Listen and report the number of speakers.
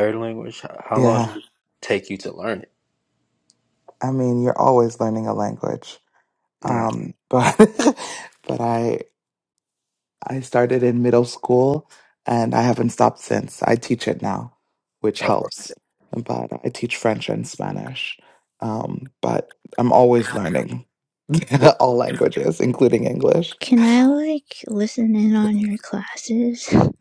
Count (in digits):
3